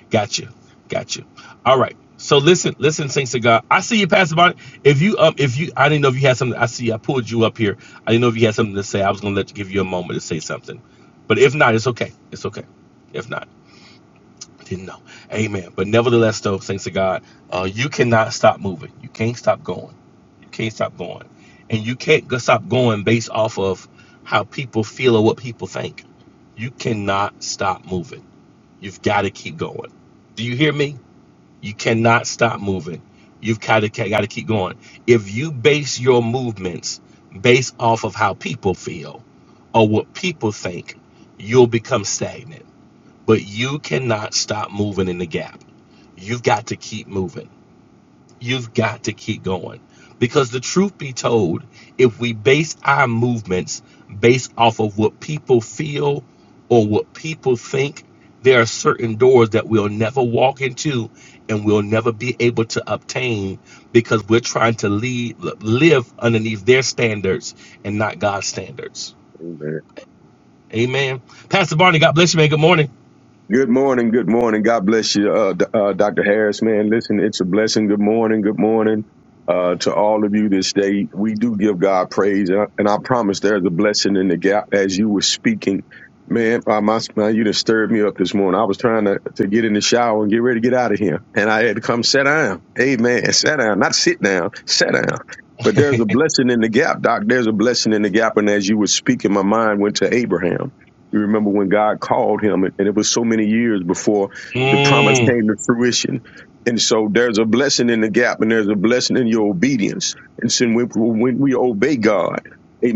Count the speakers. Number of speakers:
2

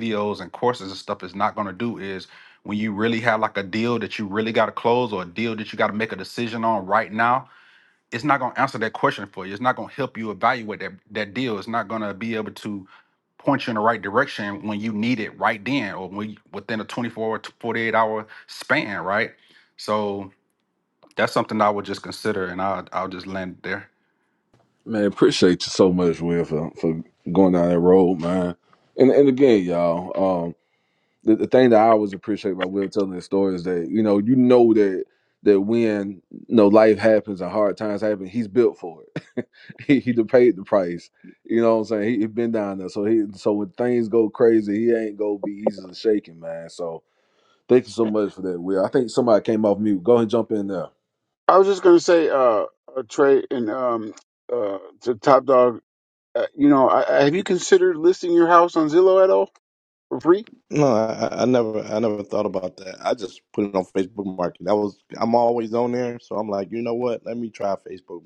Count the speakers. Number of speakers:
4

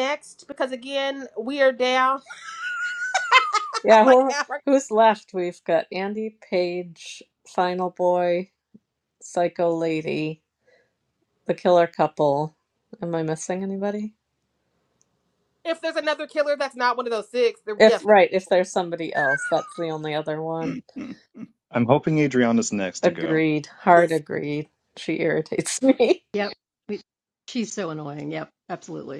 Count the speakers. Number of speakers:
4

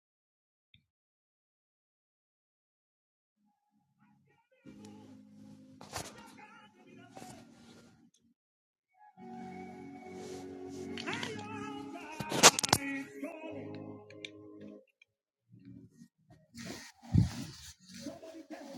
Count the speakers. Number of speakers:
0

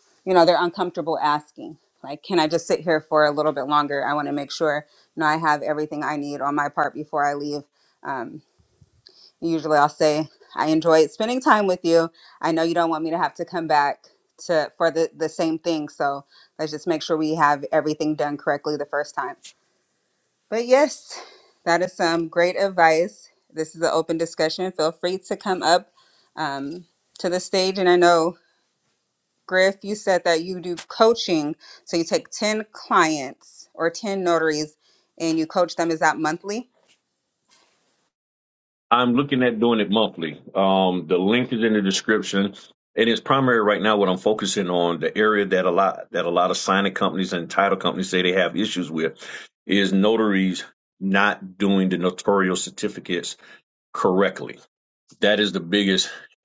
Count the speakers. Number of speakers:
2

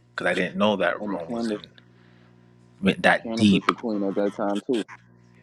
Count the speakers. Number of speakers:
2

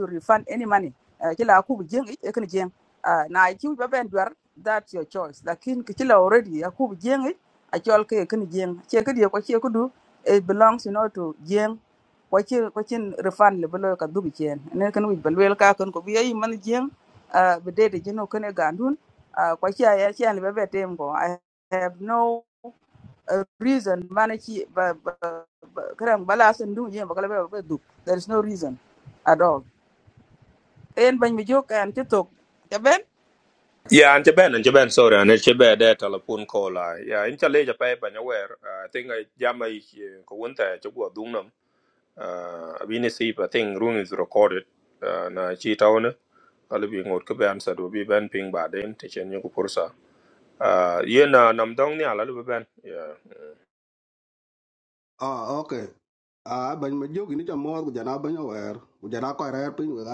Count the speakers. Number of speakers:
3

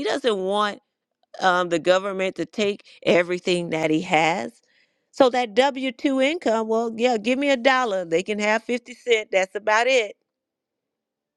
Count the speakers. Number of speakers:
1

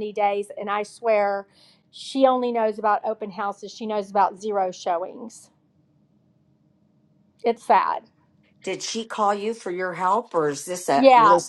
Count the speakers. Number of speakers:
2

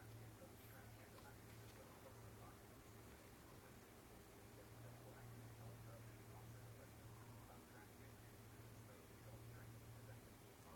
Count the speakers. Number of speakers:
0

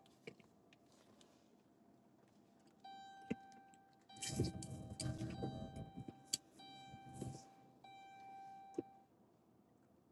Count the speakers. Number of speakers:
0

